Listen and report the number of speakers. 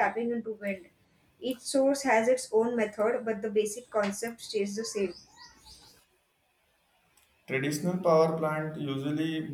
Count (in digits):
2